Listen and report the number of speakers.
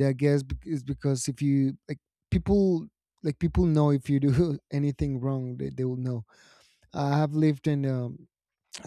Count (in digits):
1